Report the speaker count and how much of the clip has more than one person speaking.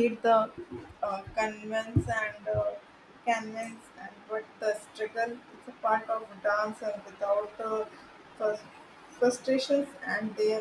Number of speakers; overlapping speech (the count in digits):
1, no overlap